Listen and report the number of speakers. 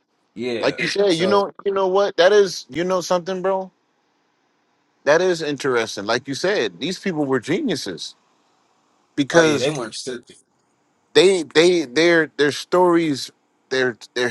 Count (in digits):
2